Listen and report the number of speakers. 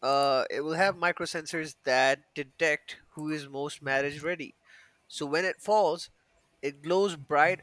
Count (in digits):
1